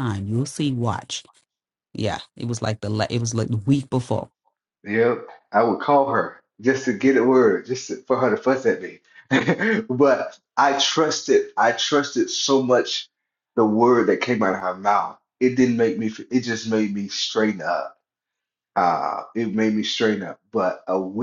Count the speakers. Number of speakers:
two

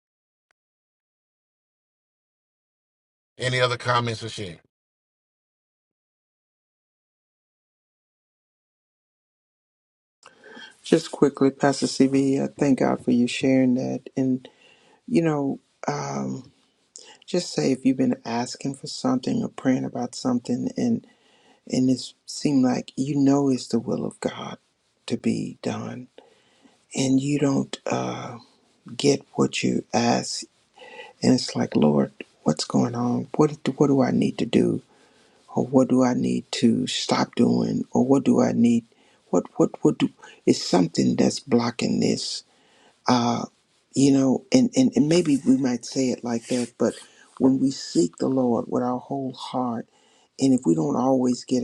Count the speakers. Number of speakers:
two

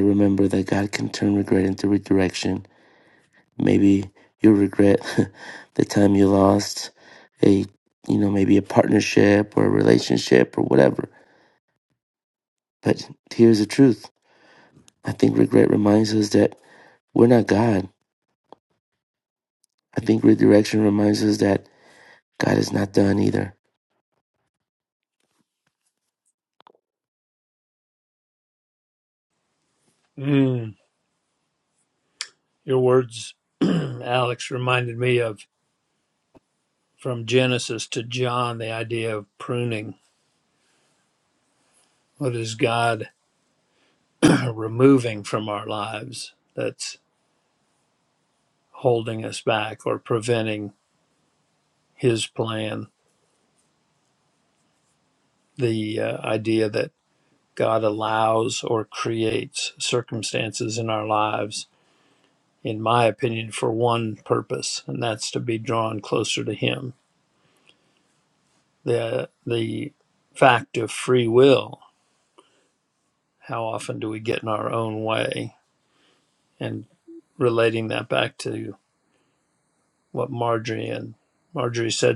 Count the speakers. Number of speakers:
two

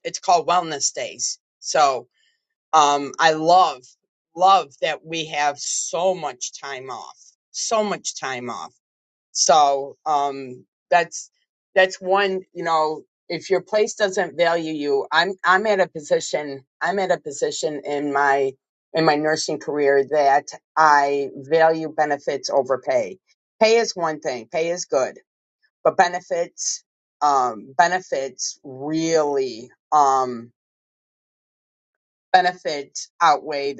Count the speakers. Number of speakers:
one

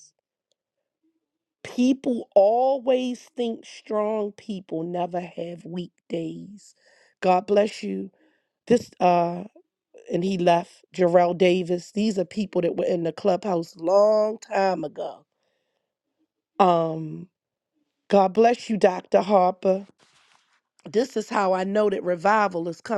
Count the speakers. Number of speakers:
one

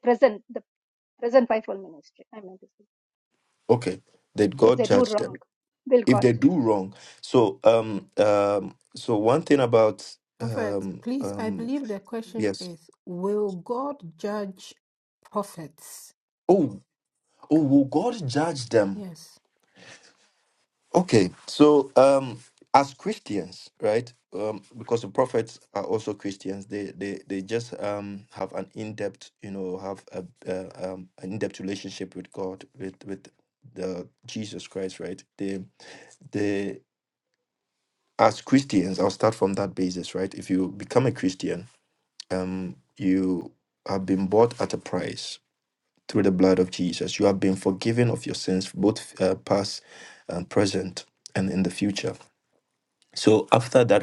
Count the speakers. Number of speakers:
three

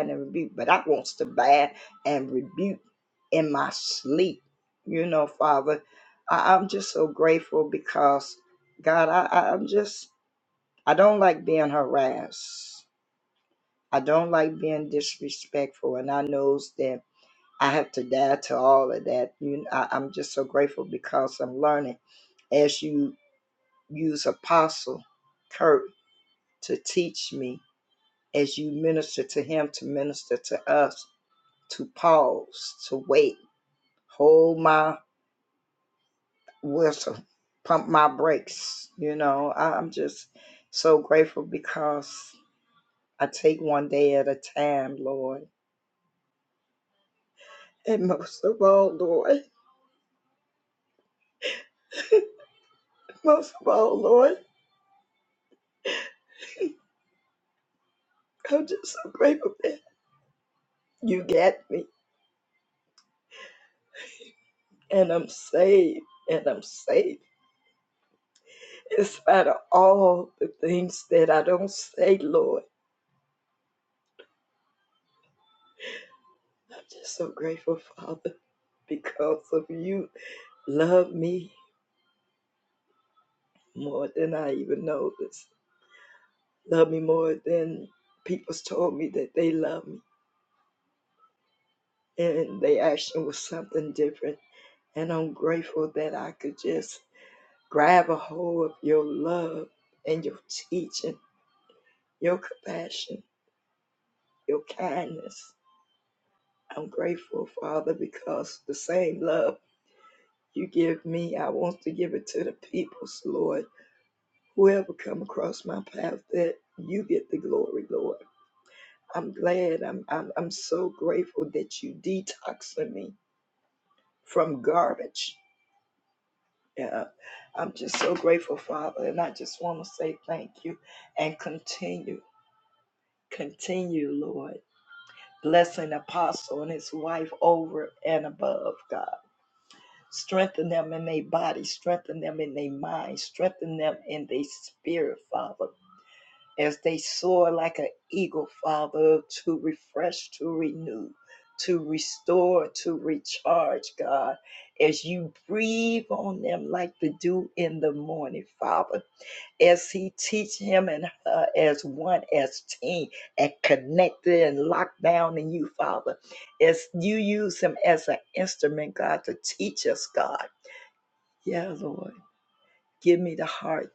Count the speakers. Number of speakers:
one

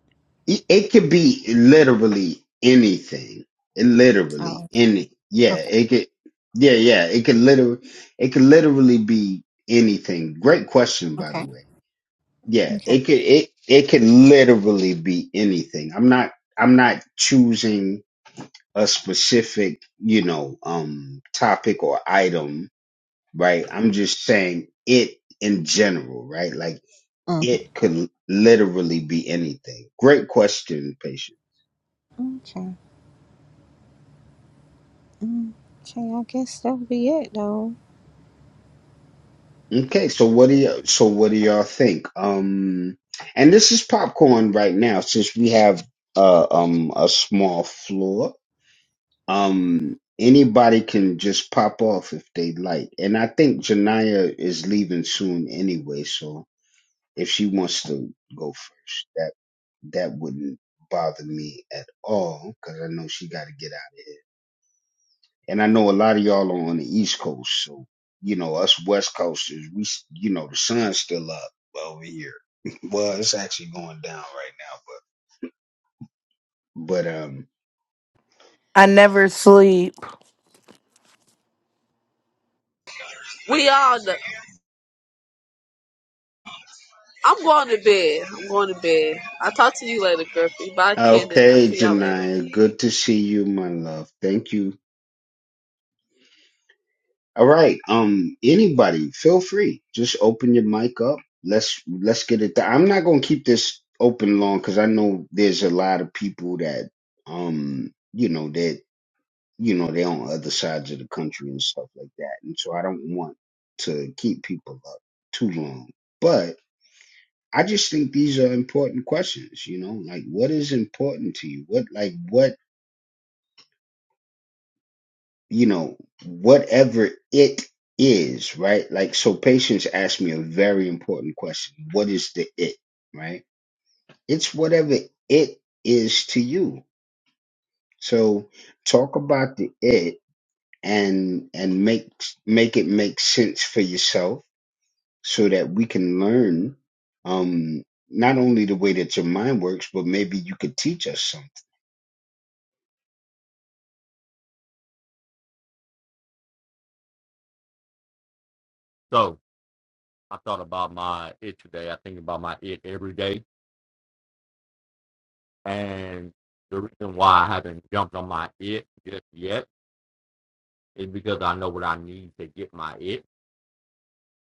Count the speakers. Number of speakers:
five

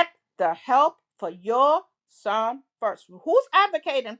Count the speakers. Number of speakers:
one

